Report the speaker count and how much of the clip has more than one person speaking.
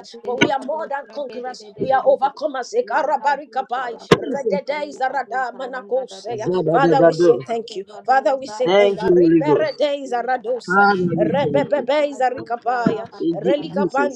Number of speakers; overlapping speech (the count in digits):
3, about 80%